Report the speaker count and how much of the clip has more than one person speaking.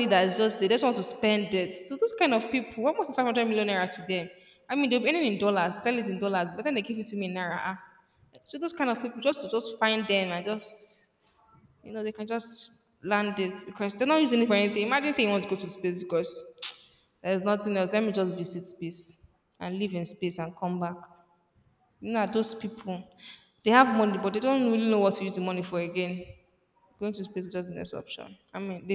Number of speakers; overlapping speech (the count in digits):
1, no overlap